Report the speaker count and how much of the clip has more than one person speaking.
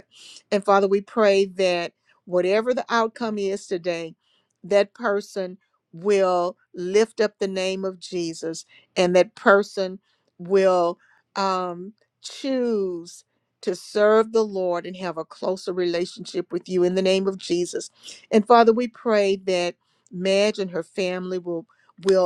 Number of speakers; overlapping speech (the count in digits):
1, no overlap